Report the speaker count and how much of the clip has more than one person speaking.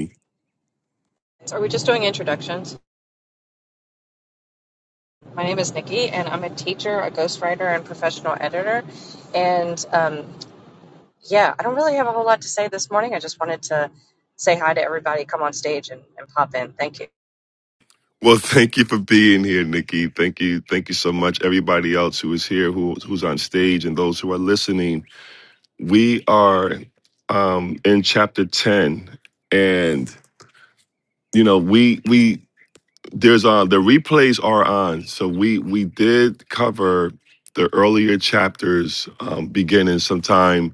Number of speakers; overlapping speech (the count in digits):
2, no overlap